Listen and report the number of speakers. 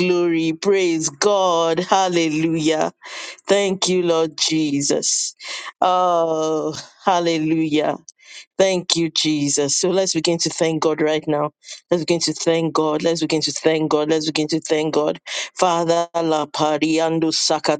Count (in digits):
1